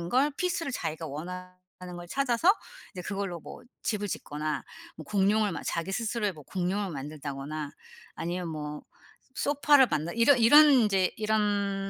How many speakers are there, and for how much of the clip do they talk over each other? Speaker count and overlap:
1, no overlap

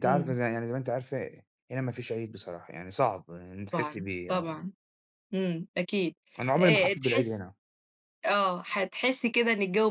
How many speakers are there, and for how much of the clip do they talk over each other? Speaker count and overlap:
2, about 18%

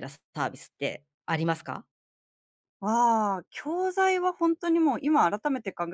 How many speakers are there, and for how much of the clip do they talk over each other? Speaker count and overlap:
2, no overlap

